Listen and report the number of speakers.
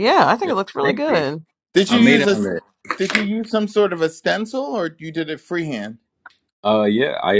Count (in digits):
3